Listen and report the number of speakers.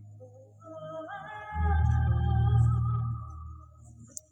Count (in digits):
0